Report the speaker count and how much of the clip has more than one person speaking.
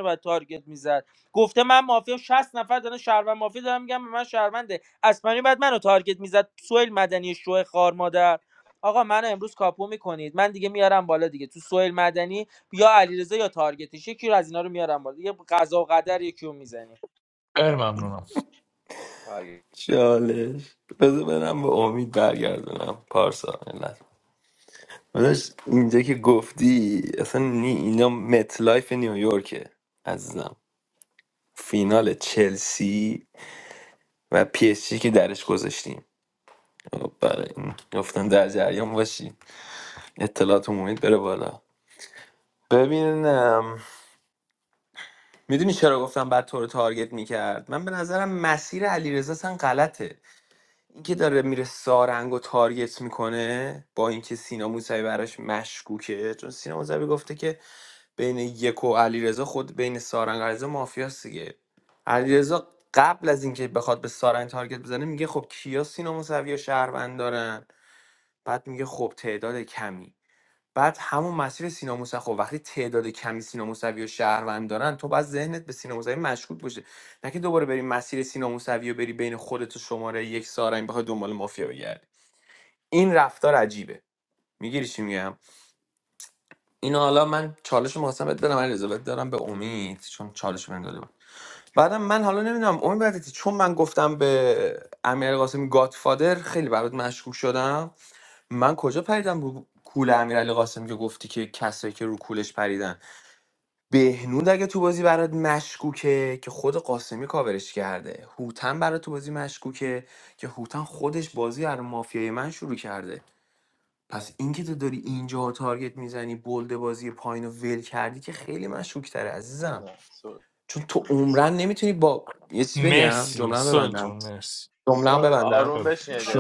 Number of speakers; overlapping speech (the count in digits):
4, about 2%